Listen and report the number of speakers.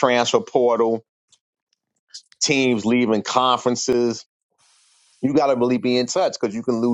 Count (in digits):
1